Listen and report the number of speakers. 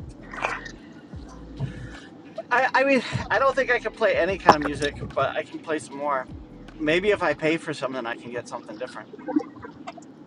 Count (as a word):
one